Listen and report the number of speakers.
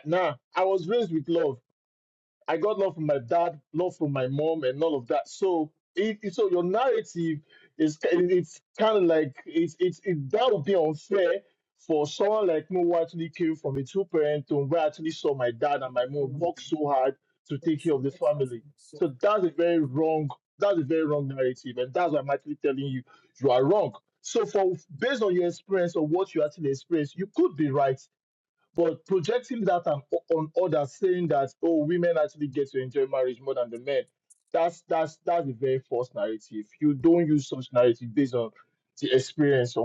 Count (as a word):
one